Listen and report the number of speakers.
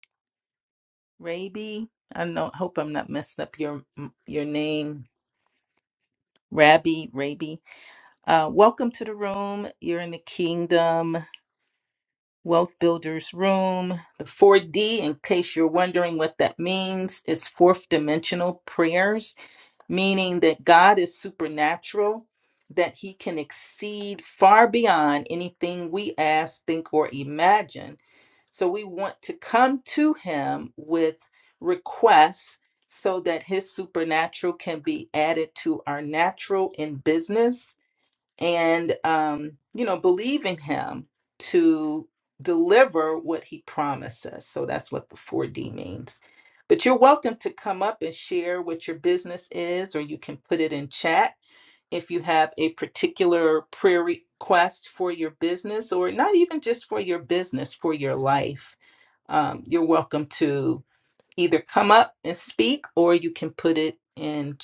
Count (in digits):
1